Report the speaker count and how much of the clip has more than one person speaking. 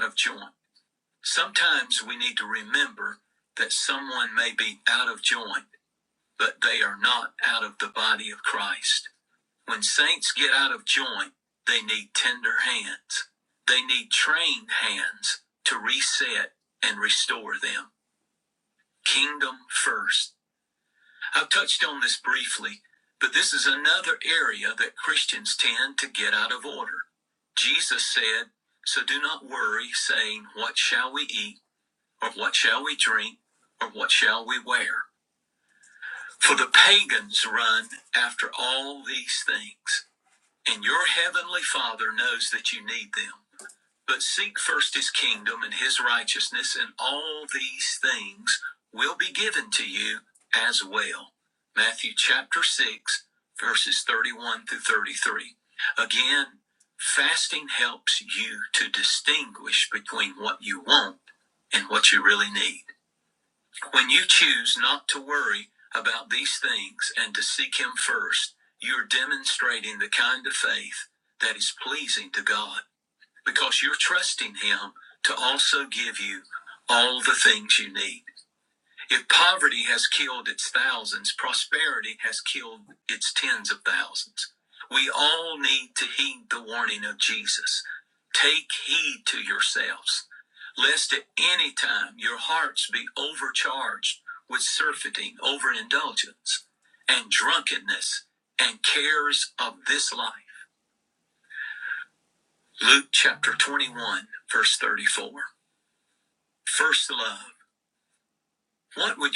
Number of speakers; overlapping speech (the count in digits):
1, no overlap